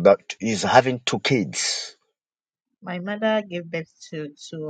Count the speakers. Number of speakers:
2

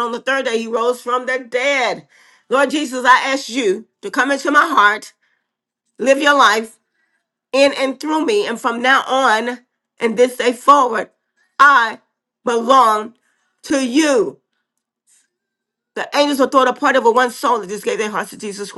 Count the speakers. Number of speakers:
1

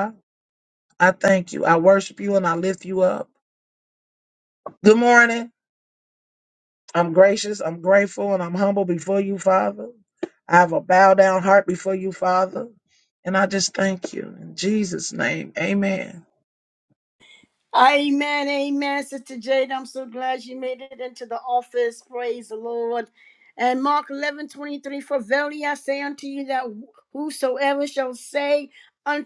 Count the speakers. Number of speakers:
2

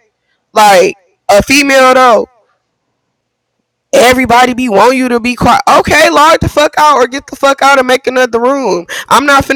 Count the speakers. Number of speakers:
1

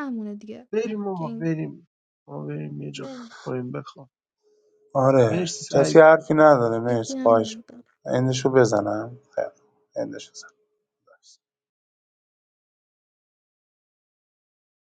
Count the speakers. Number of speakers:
3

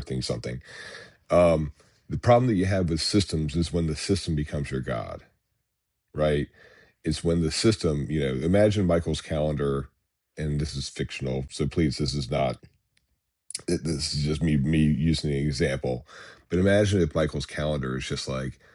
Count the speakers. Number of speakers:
1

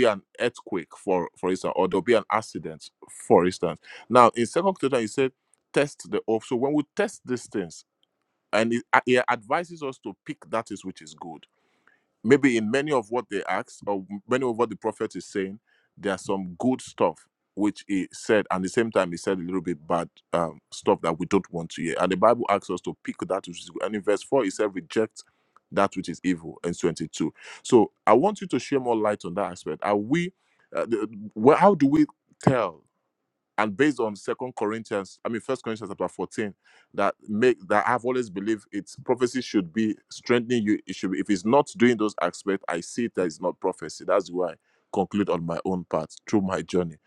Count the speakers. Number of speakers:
1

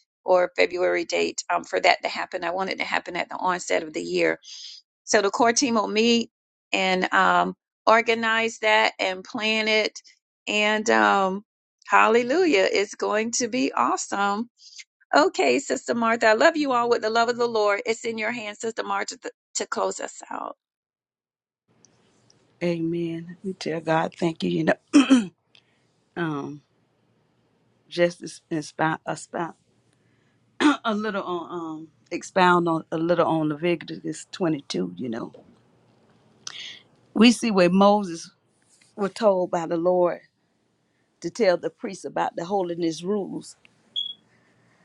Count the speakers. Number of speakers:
2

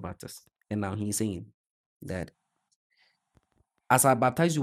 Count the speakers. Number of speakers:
1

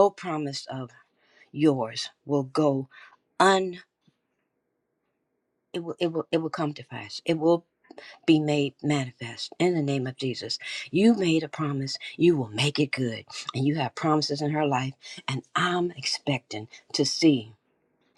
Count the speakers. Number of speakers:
1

